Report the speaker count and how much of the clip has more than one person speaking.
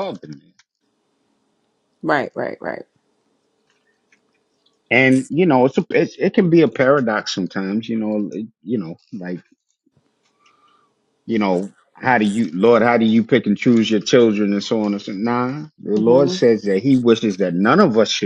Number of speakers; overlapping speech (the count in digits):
2, about 2%